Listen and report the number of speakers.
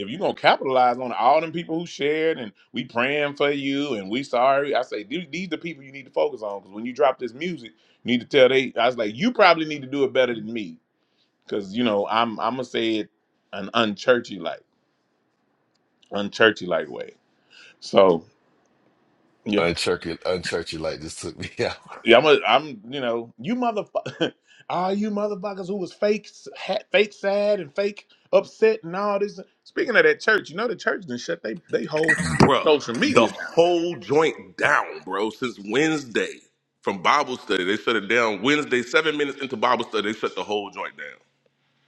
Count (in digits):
3